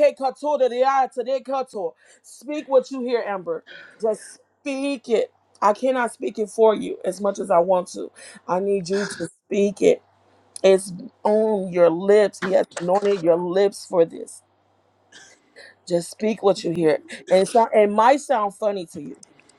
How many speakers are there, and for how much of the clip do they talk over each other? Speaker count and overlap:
one, no overlap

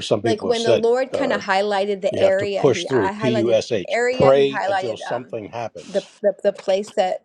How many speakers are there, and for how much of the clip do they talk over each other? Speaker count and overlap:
two, about 63%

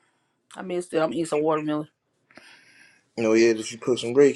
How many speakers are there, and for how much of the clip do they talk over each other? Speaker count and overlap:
two, no overlap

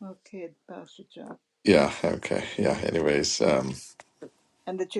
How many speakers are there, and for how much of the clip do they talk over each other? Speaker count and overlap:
two, no overlap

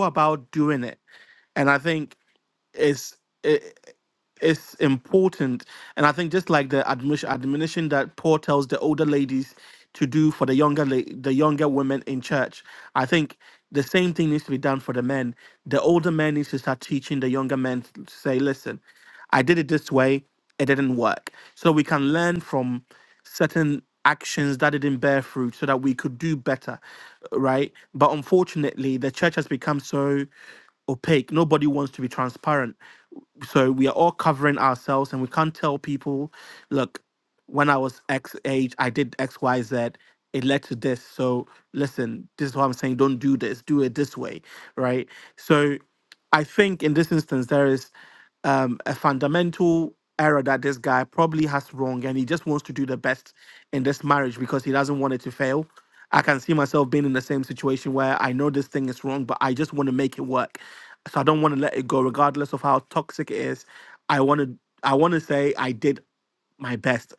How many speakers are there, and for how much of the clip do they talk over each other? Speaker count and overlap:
one, no overlap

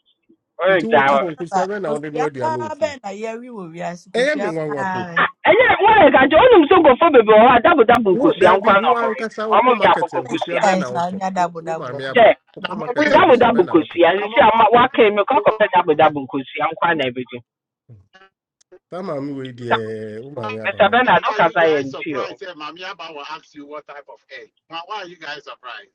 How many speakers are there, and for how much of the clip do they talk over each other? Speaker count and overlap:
four, about 45%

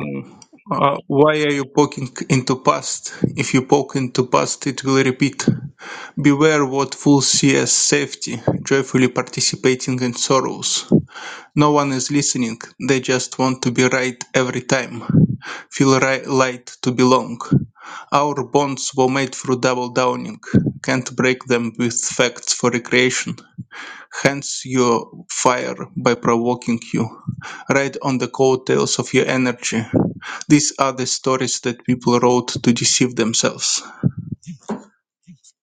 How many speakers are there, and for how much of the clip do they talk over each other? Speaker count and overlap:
one, no overlap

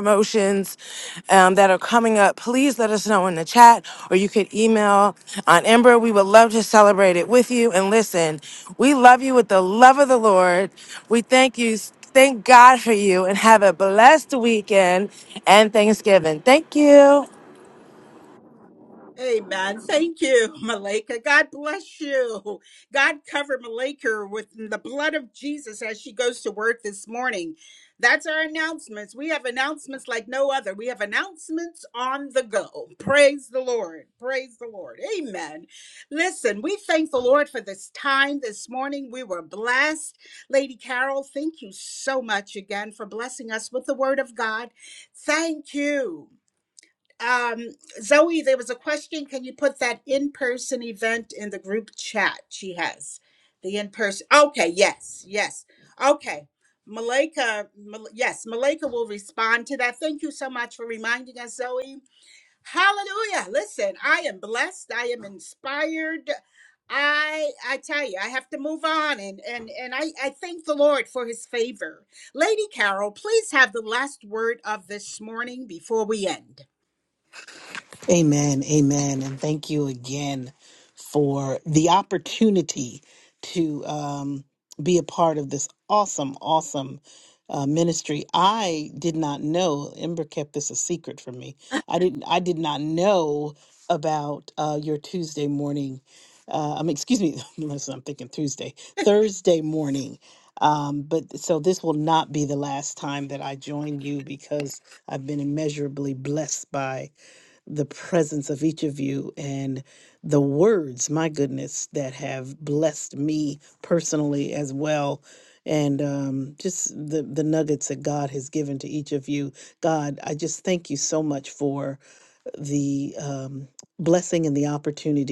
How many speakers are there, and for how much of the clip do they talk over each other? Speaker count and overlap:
three, no overlap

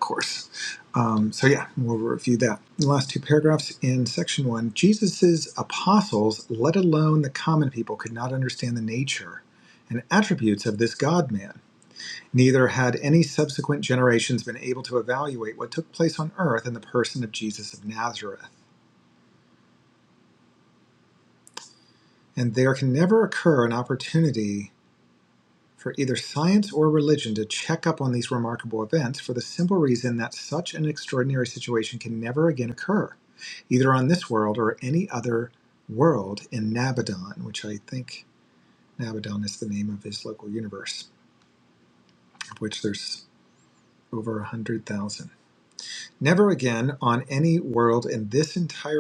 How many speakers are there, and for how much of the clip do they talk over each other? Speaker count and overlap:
one, no overlap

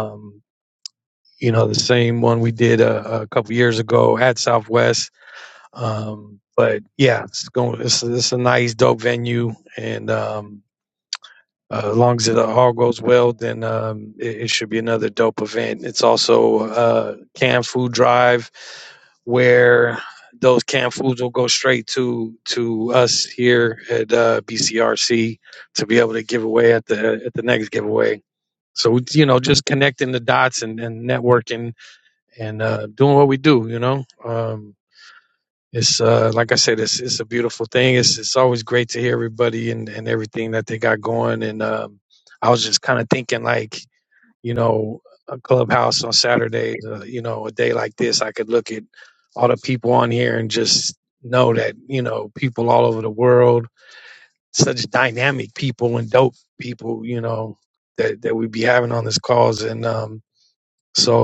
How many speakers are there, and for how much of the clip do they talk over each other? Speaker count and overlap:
one, no overlap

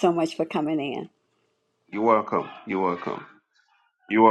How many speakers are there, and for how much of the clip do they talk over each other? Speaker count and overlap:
two, no overlap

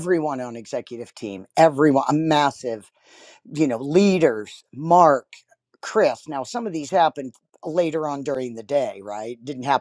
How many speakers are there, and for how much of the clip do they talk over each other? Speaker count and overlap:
one, no overlap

